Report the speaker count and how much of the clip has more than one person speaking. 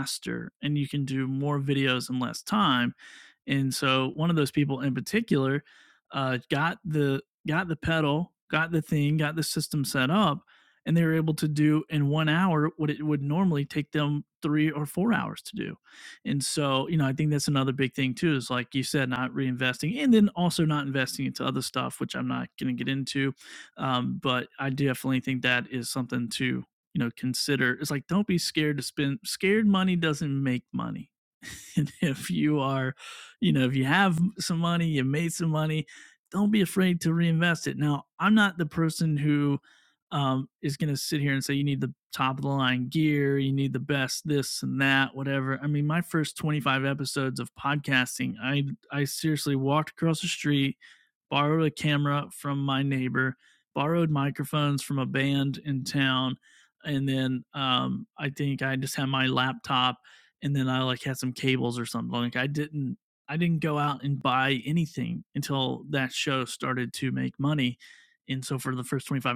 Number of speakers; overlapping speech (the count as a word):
one, no overlap